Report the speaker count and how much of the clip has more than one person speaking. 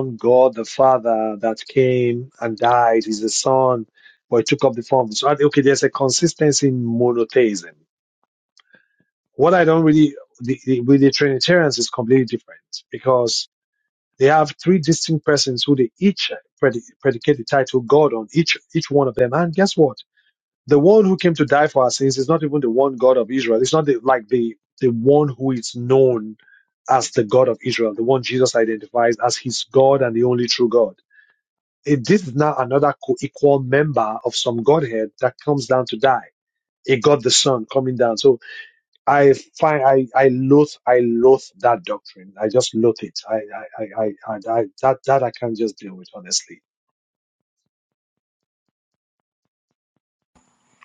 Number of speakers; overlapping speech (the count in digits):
1, no overlap